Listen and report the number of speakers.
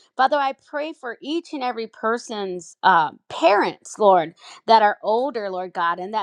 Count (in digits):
1